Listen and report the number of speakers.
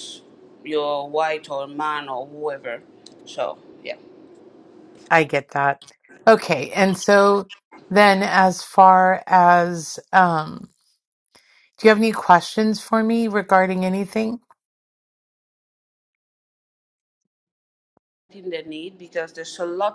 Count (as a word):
two